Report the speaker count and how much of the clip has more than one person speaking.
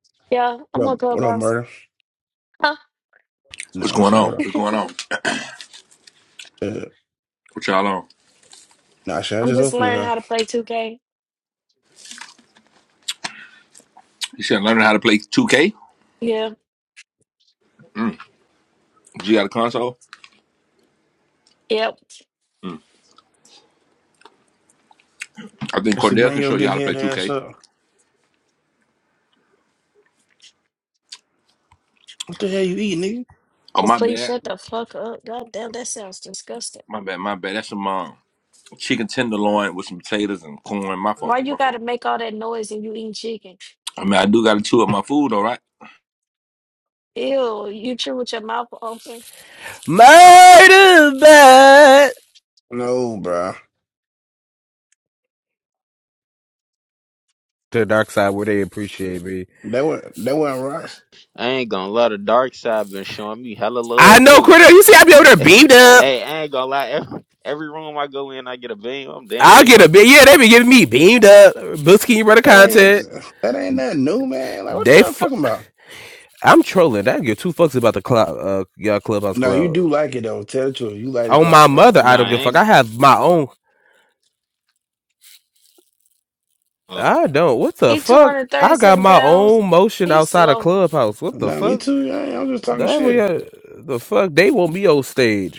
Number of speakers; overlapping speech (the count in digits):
5, about 12%